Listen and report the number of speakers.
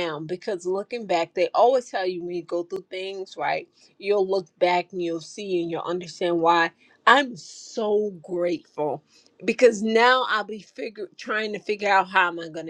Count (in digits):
1